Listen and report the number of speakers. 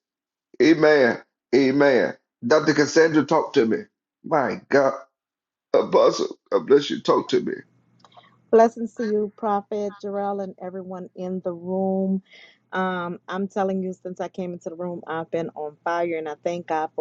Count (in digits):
2